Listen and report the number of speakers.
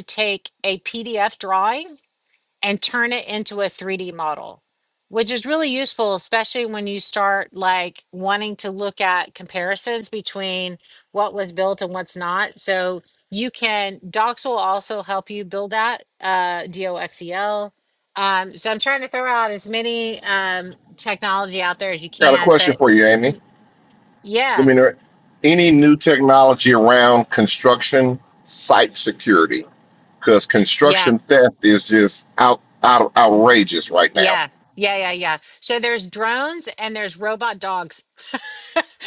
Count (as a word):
two